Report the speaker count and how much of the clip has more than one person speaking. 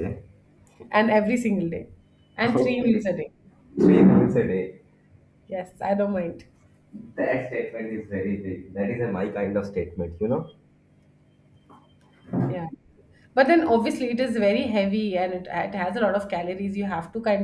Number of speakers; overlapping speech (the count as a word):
two, about 3%